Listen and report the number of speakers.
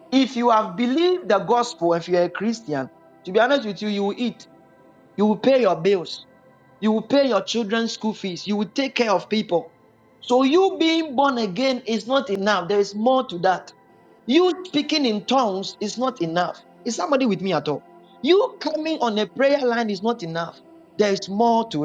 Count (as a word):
one